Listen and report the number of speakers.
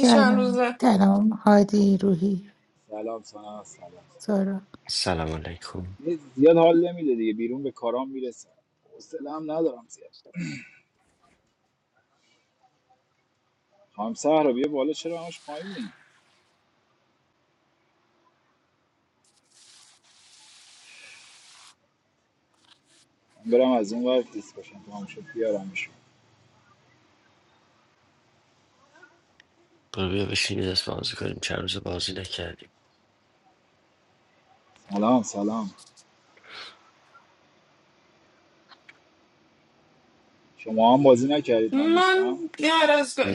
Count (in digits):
4